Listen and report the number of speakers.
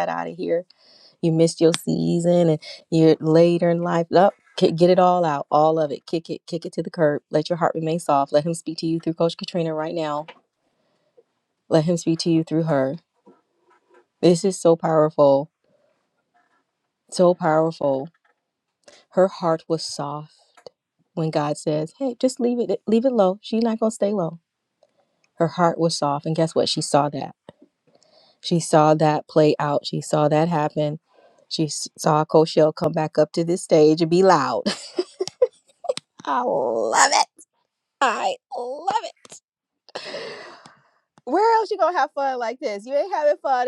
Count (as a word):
one